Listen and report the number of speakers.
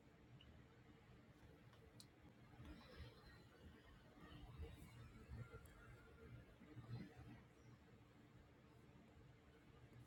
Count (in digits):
0